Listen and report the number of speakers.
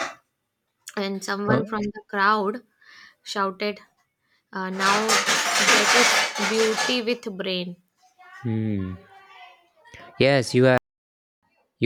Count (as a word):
two